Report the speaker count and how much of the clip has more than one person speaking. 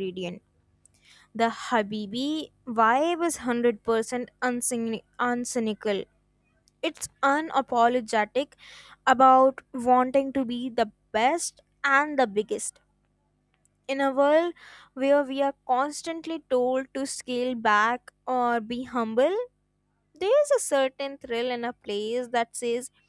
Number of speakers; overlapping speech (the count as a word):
one, no overlap